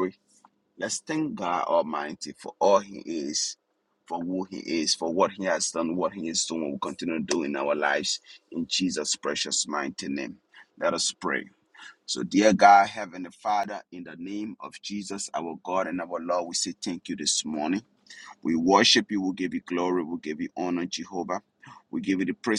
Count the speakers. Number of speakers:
one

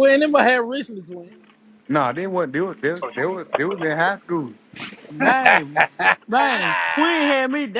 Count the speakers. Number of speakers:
three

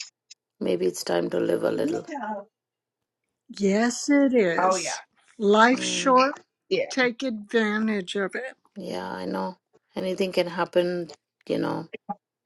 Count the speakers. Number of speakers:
three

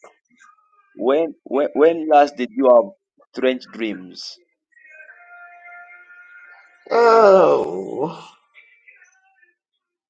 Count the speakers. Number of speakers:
two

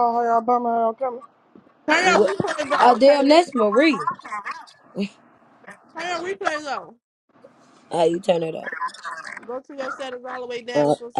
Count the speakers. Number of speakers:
three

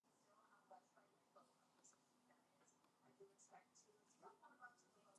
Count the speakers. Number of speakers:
zero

